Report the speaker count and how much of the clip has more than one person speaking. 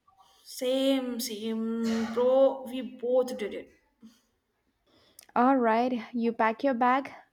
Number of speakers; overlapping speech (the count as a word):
two, no overlap